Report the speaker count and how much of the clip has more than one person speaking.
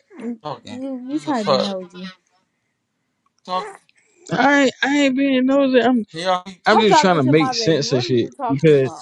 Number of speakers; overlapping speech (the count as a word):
three, about 29%